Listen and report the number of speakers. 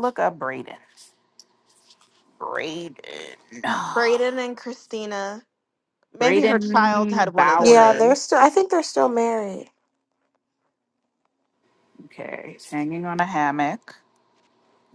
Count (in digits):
3